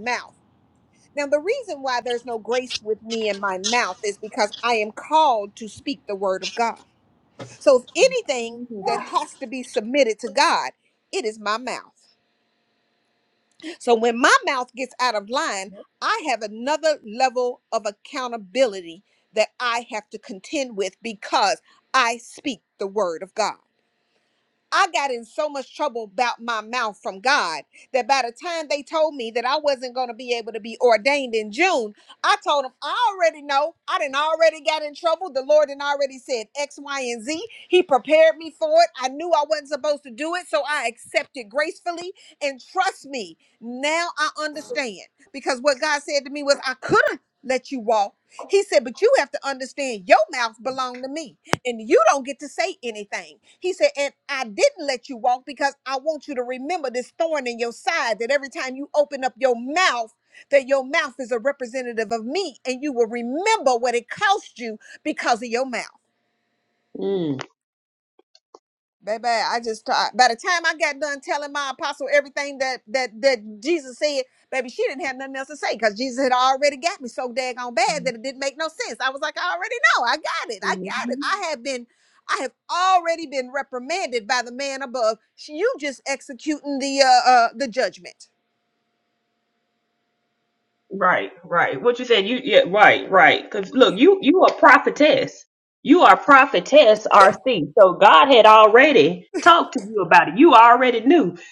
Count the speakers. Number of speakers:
2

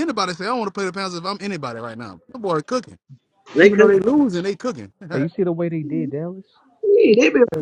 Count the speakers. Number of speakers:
3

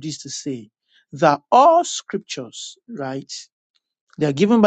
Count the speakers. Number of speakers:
1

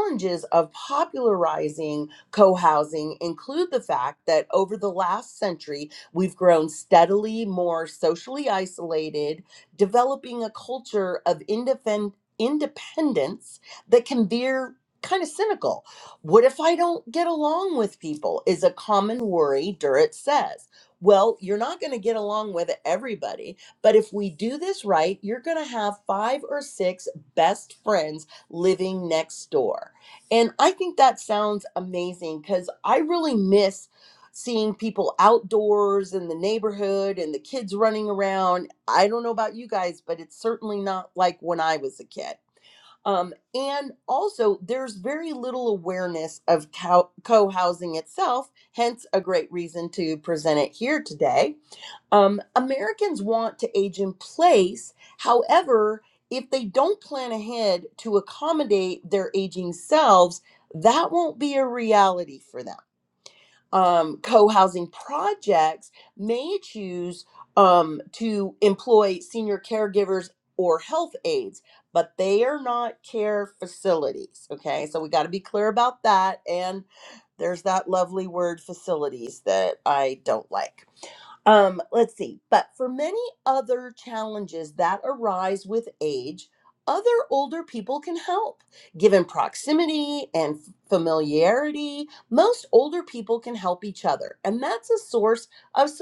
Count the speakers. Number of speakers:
1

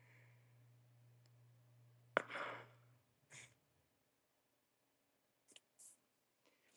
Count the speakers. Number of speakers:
0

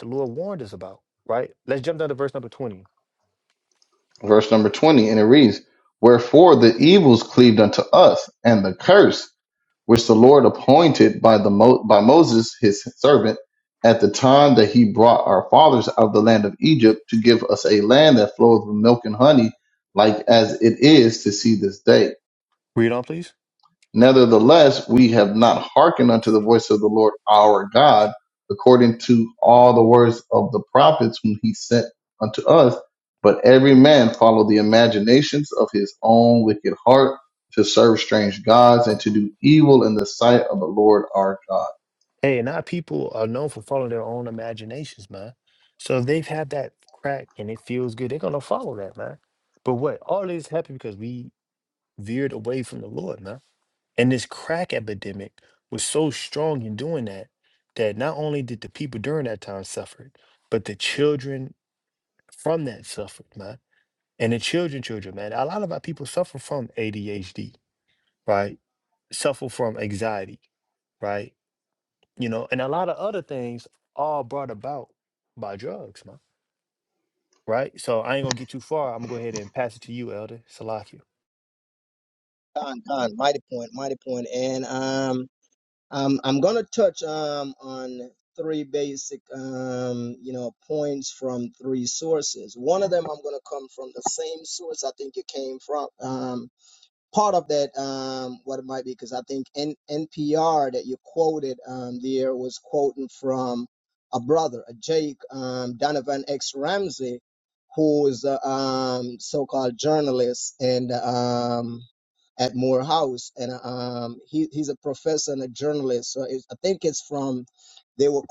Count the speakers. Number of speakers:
3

